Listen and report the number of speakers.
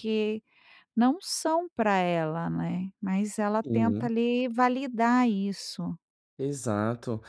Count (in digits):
2